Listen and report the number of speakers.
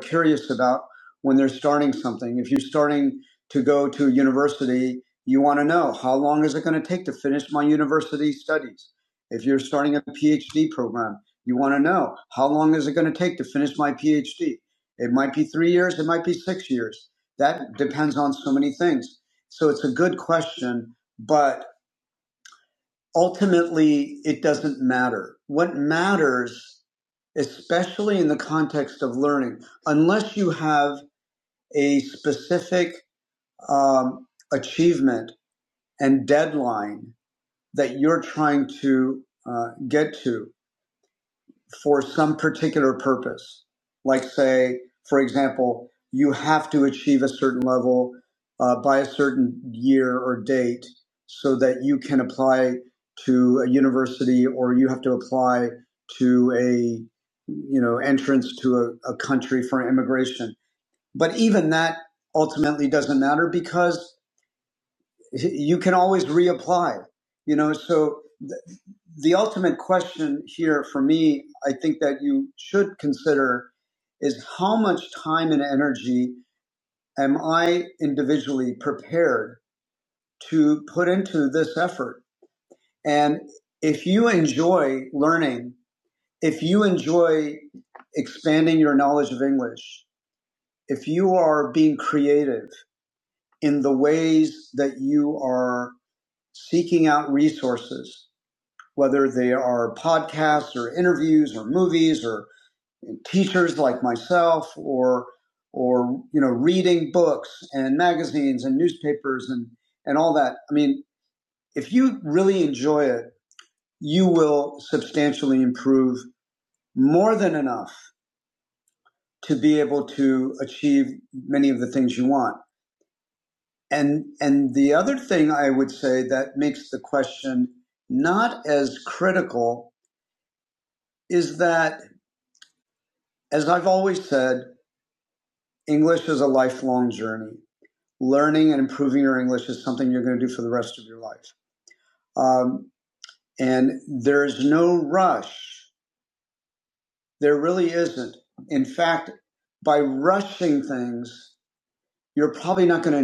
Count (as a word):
one